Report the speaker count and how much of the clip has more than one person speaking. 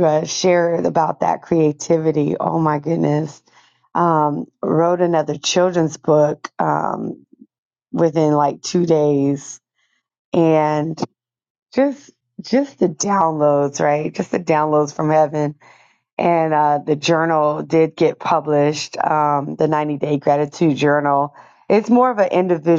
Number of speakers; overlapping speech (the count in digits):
1, no overlap